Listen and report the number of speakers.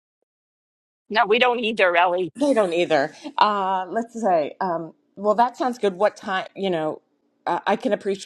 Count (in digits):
2